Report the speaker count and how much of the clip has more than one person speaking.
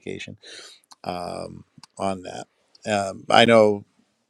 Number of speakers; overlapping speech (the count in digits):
1, no overlap